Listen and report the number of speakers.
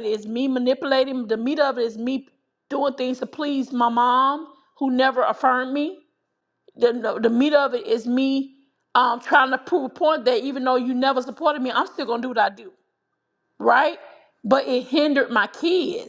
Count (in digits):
1